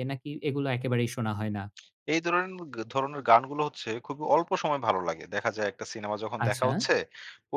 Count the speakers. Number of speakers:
2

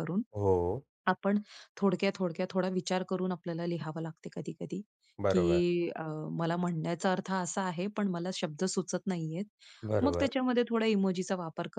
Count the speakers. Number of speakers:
2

